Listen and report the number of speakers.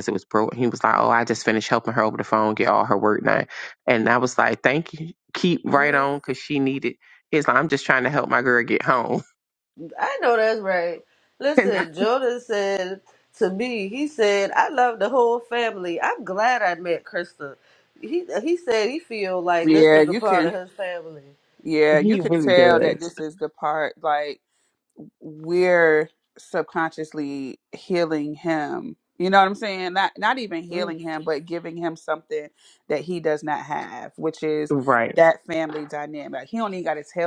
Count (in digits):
3